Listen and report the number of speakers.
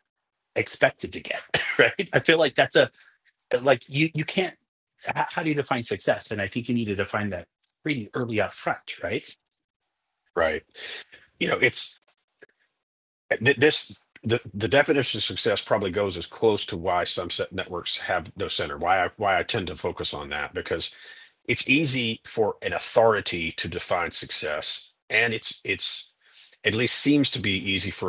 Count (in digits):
2